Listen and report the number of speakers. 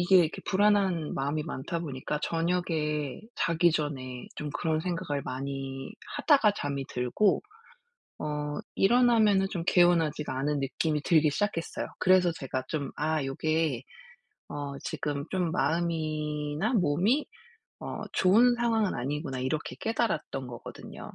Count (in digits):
1